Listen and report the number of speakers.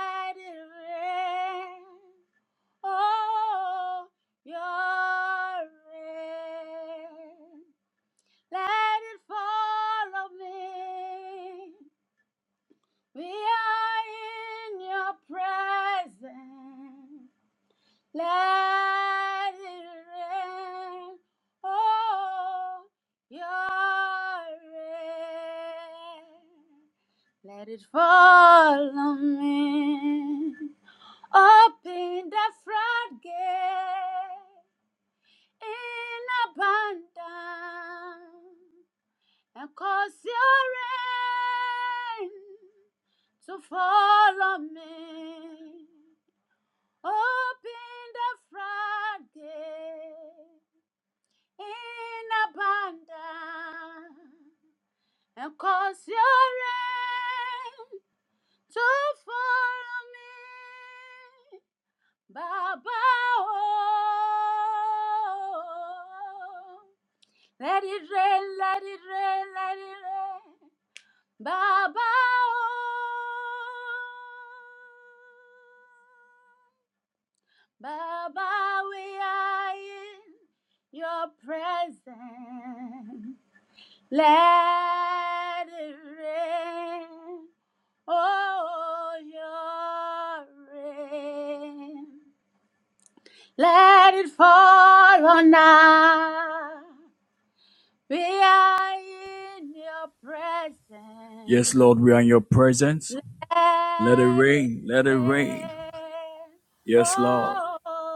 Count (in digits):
2